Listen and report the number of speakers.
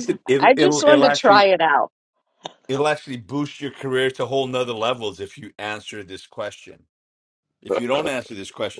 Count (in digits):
2